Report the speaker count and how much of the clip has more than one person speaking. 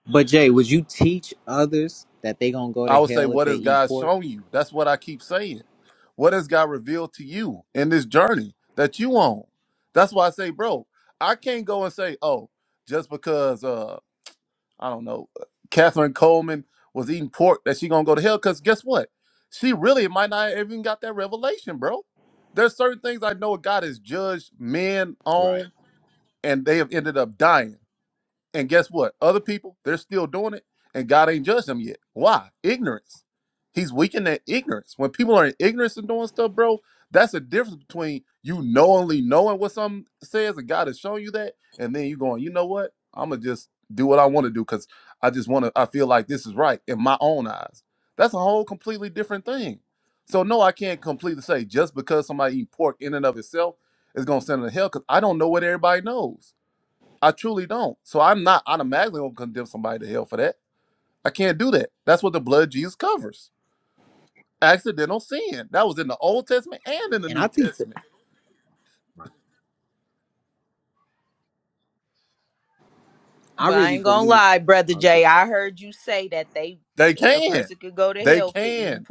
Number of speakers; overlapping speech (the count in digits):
3, about 5%